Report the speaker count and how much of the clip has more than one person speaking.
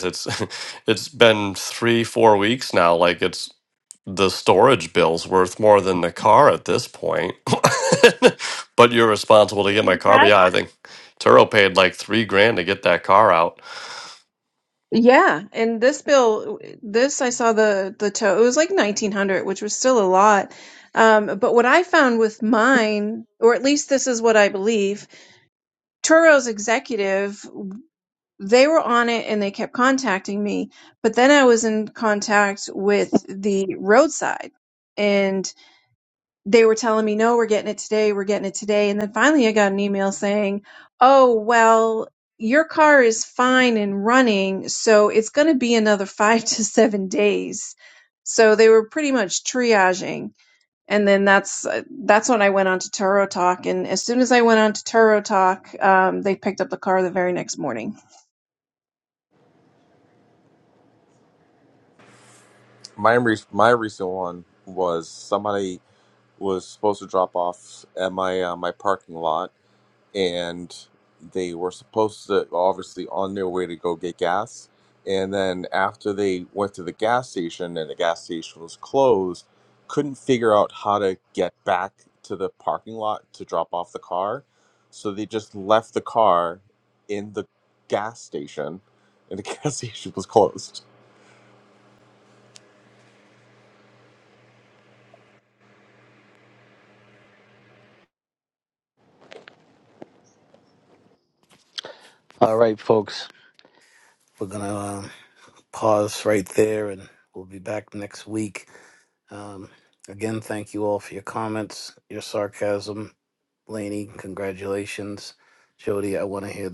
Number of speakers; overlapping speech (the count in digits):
4, under 1%